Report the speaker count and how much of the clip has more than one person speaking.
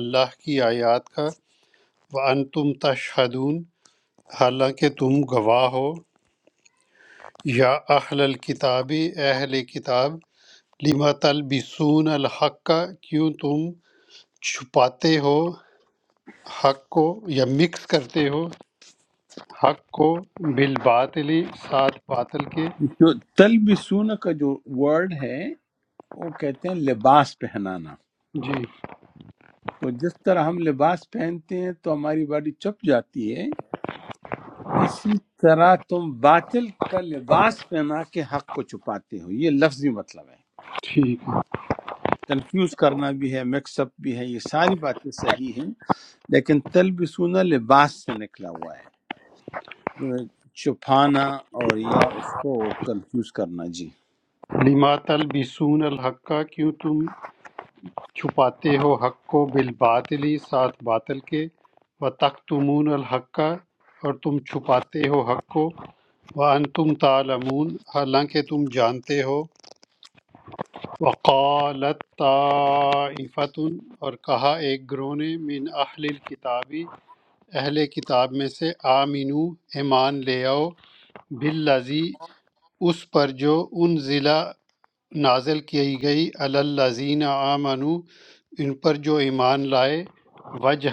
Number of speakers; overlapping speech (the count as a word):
two, no overlap